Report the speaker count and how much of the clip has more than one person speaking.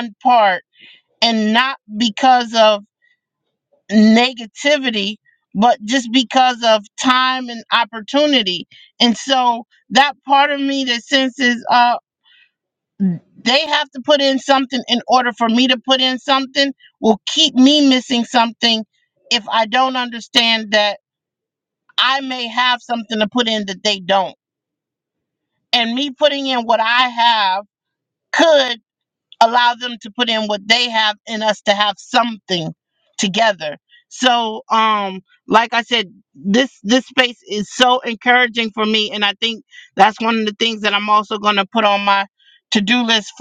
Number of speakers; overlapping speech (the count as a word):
one, no overlap